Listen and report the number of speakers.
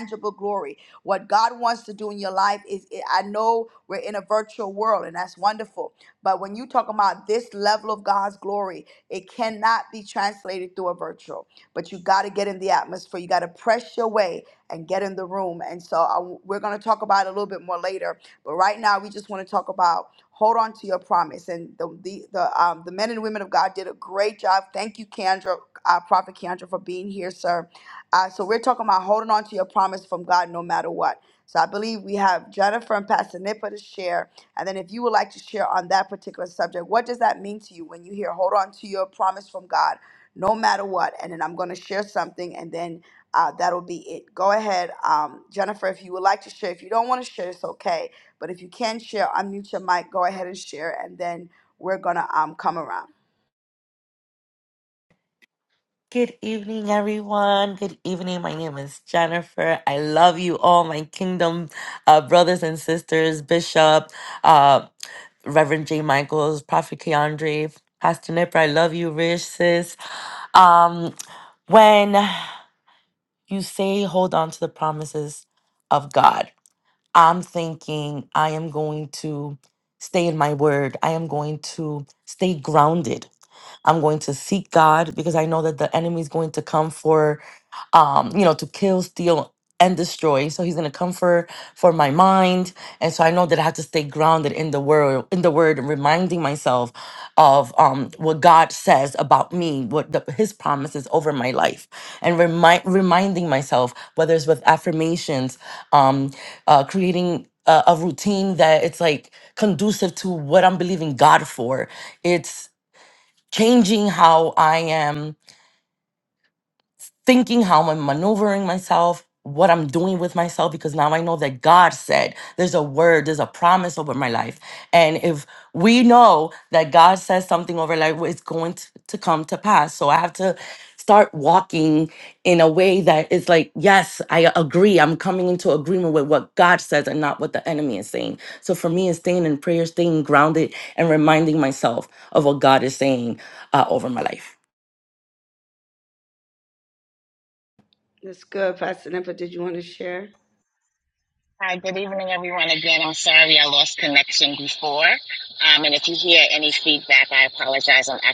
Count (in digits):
3